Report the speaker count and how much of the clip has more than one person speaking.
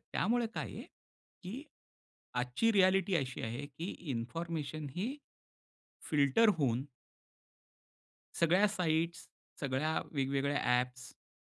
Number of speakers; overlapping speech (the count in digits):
1, no overlap